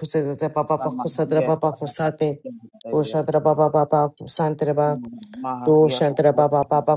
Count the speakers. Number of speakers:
2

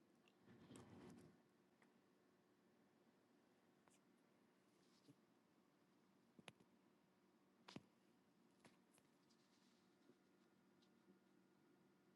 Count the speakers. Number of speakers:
0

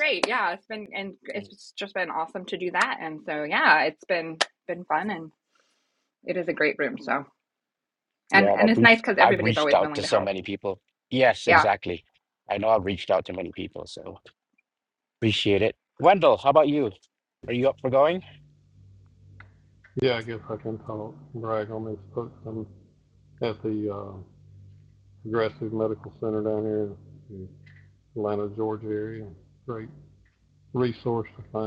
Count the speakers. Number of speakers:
3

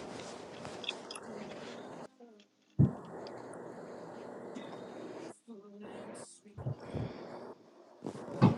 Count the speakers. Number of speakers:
0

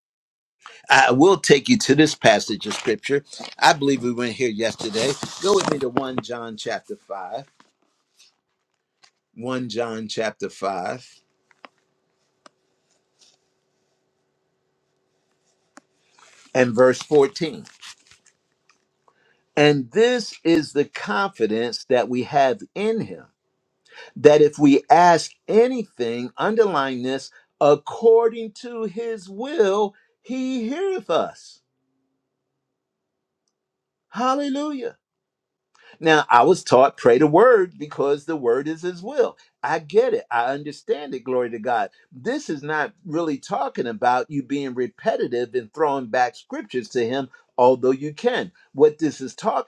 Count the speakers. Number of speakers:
1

